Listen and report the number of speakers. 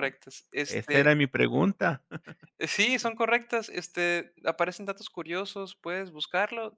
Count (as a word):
two